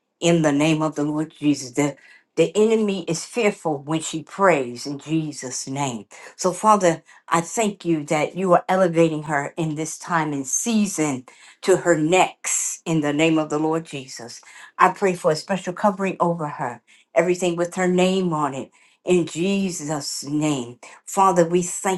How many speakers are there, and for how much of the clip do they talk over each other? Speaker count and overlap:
one, no overlap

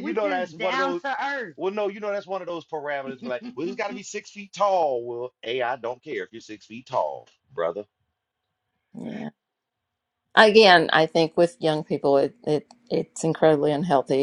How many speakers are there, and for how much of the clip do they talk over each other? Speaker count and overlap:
three, about 12%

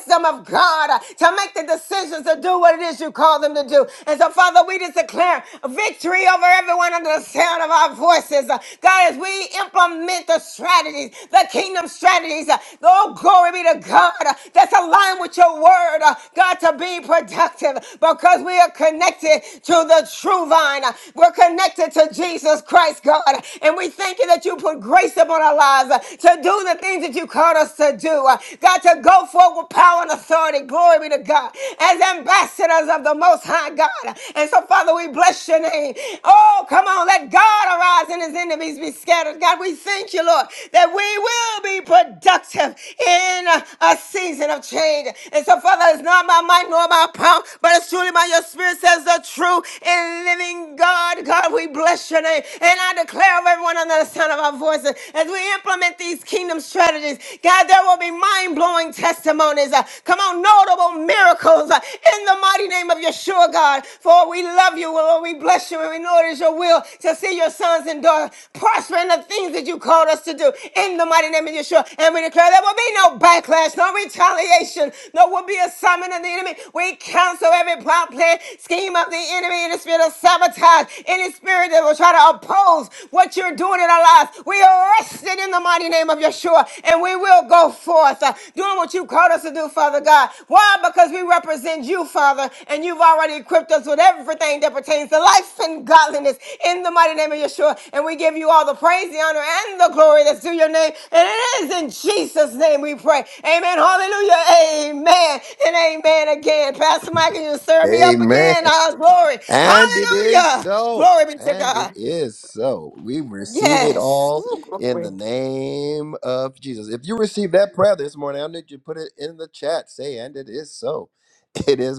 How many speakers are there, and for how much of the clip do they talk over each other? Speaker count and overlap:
two, about 3%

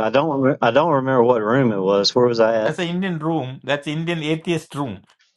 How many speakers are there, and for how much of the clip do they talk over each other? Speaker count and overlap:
two, about 1%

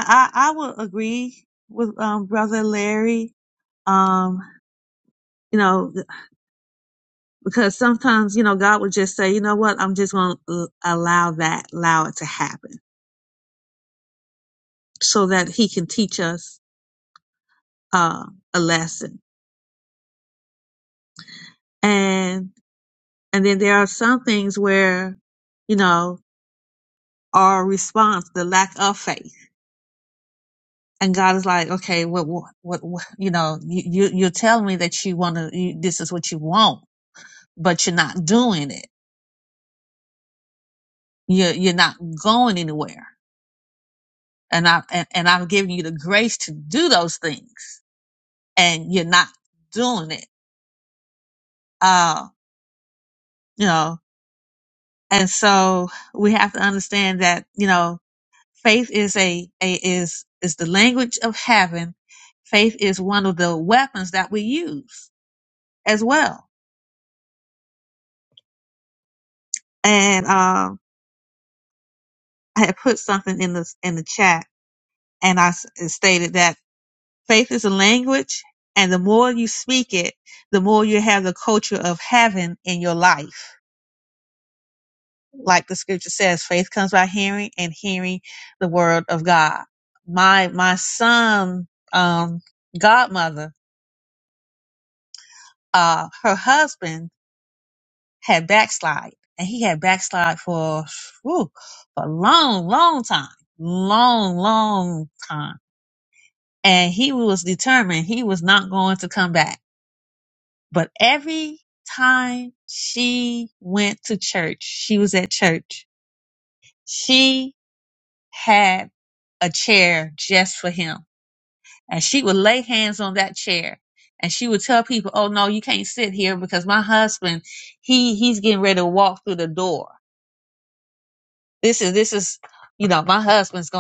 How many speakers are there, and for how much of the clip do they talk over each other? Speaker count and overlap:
one, no overlap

